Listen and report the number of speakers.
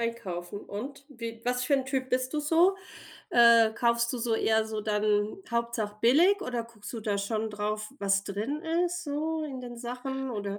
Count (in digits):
1